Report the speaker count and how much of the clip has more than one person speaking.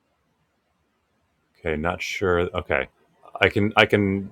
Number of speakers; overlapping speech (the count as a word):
one, no overlap